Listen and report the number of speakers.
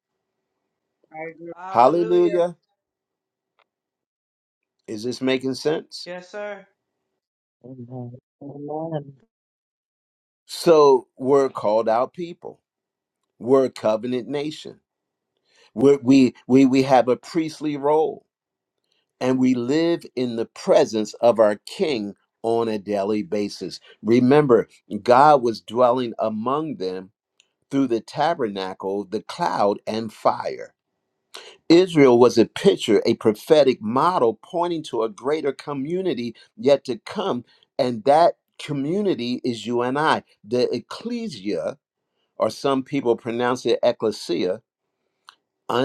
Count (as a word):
three